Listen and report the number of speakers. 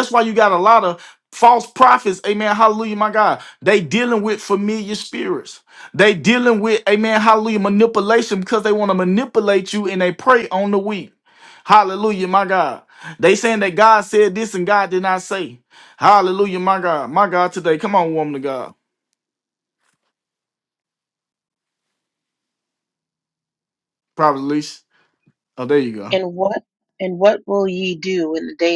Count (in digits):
2